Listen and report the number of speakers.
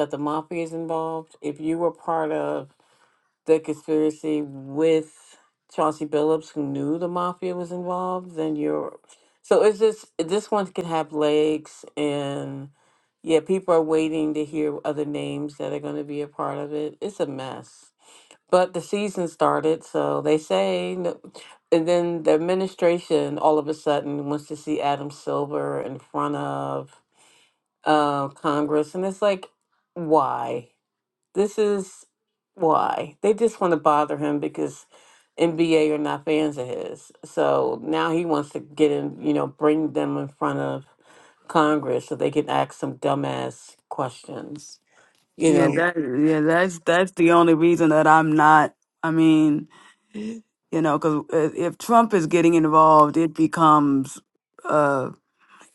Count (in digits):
2